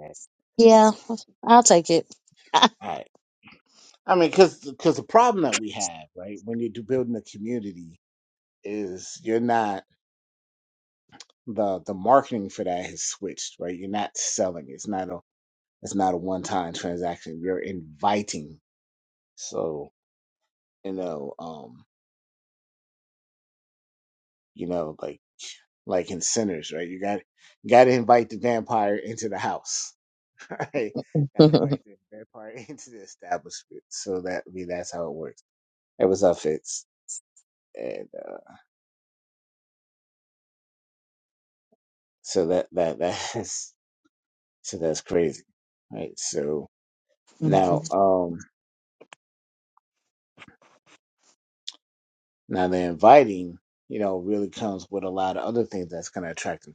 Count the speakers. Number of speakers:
2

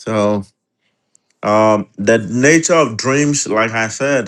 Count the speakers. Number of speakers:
1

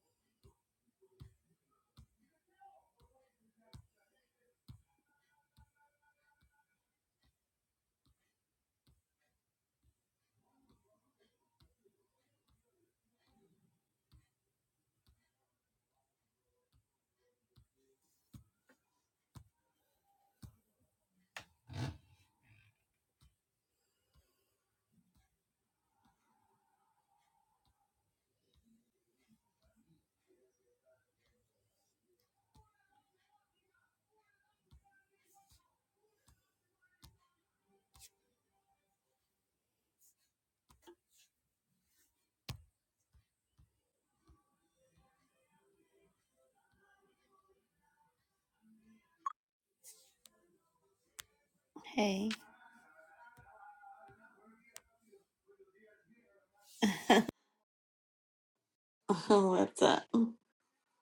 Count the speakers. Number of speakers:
1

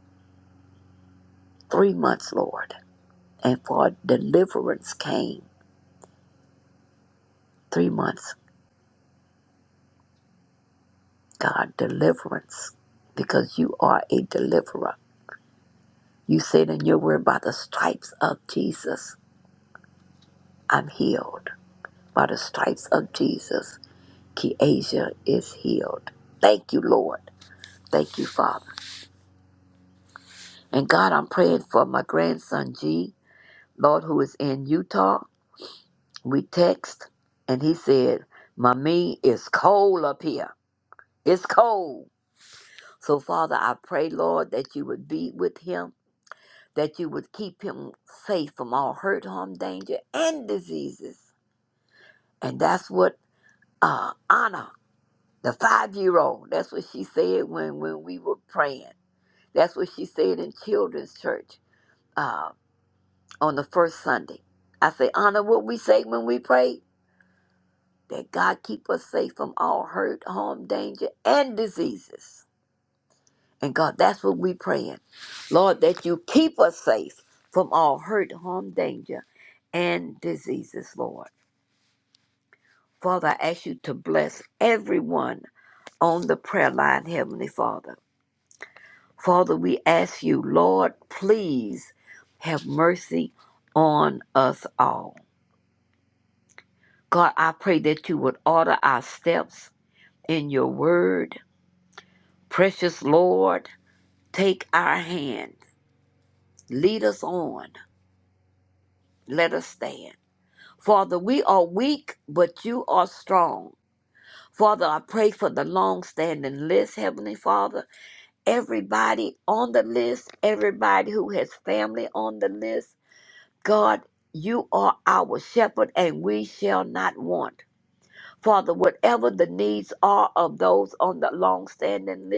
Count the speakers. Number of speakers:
1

